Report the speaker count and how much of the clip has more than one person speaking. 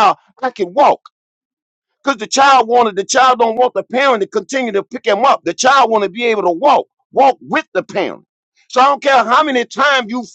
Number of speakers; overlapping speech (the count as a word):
one, no overlap